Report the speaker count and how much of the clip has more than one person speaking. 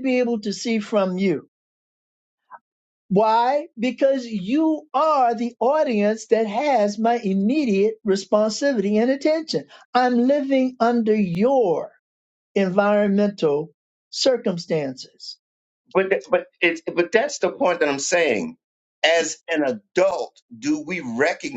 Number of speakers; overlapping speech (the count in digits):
2, no overlap